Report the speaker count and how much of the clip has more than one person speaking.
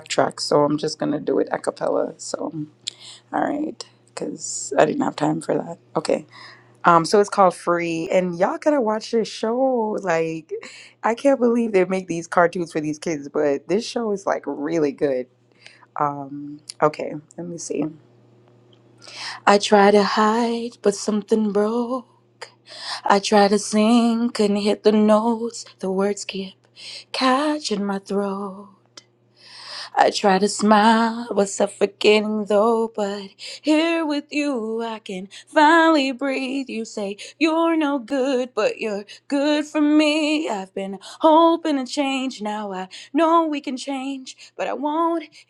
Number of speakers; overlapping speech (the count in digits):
1, no overlap